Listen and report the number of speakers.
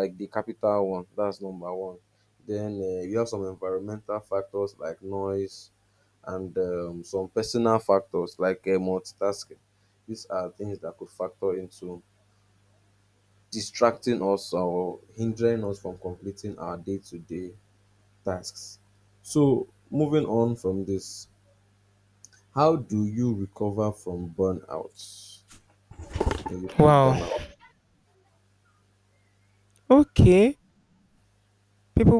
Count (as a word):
two